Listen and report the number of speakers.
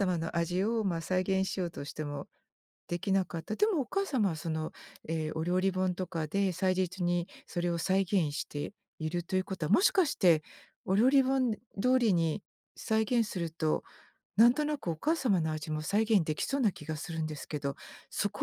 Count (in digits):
1